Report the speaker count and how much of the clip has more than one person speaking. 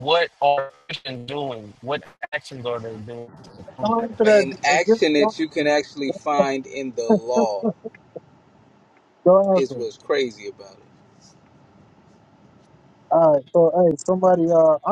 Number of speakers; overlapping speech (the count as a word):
three, about 12%